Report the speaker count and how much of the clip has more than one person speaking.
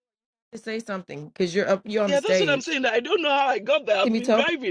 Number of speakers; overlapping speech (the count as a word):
two, about 22%